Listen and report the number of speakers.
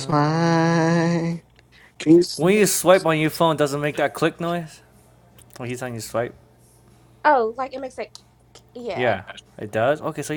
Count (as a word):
three